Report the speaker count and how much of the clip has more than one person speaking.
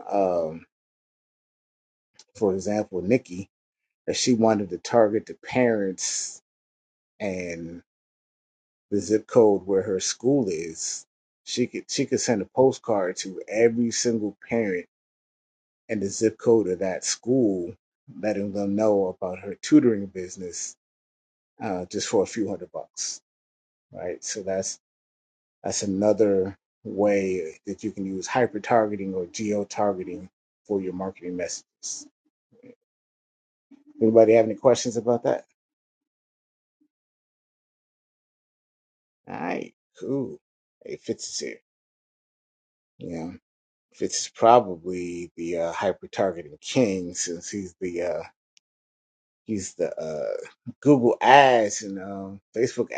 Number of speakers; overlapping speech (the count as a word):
one, no overlap